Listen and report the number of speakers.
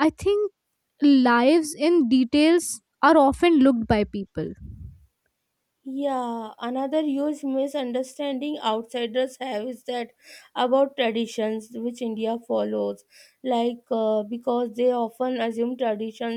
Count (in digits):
2